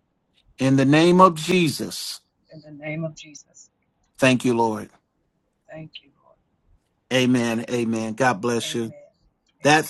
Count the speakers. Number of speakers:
two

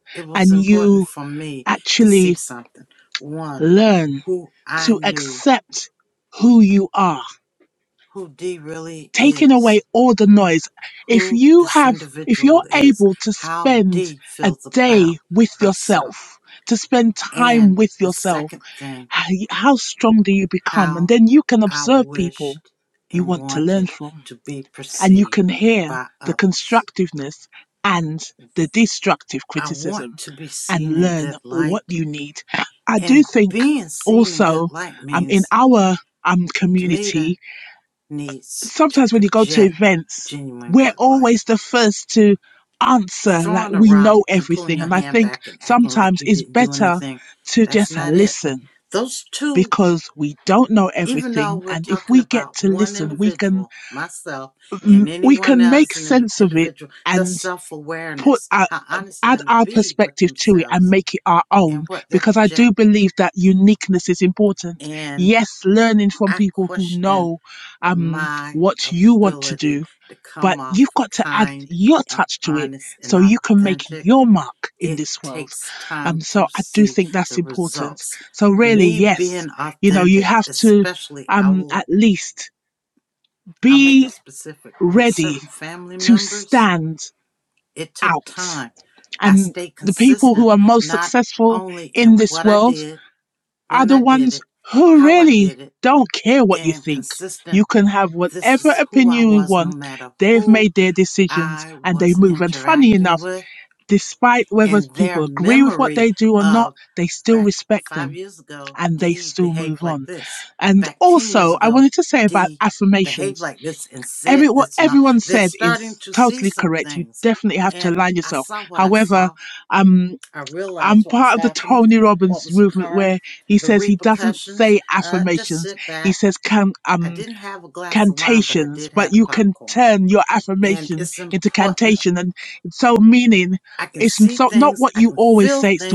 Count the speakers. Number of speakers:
two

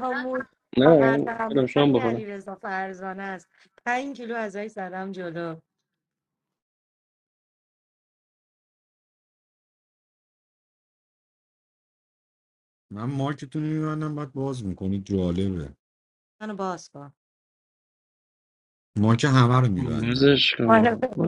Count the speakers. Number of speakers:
three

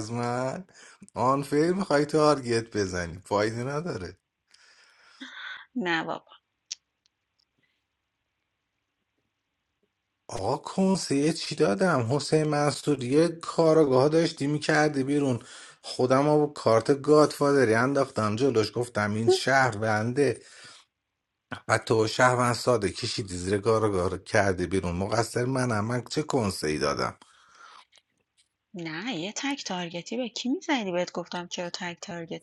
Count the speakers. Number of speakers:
two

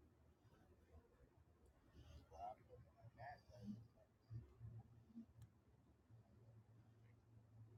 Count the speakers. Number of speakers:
zero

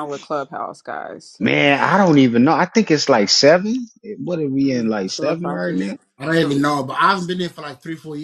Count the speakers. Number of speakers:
three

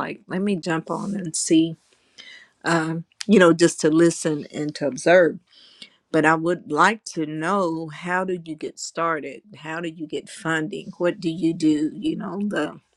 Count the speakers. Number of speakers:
one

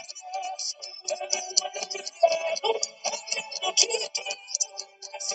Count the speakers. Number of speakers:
zero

